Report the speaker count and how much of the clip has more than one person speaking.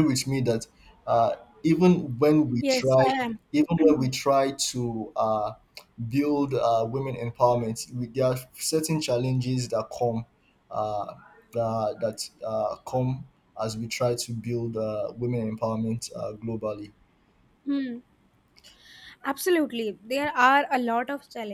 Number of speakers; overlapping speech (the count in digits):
2, about 2%